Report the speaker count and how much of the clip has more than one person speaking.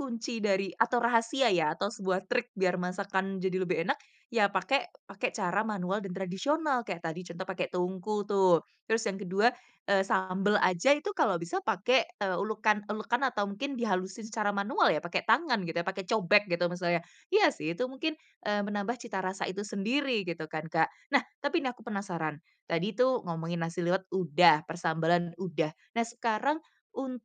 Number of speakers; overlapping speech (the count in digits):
1, no overlap